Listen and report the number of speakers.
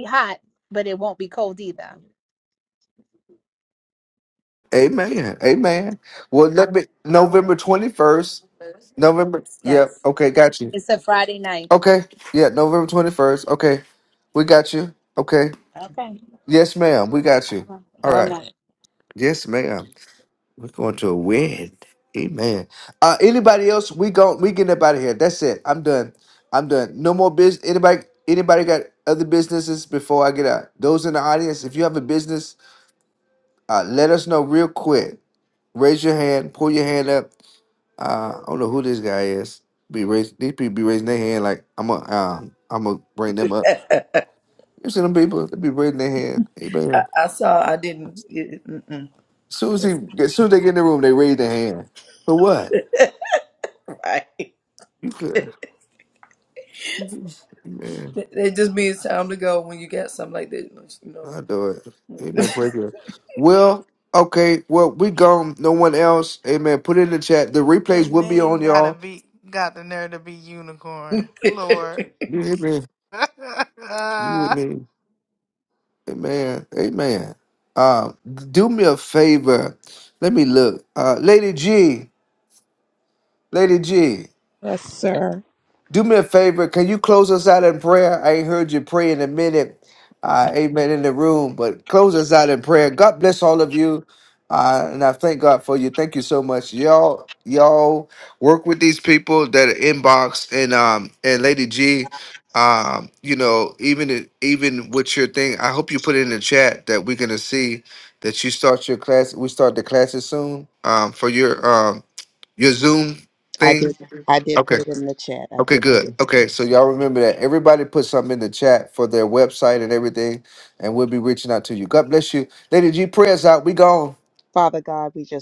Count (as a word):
five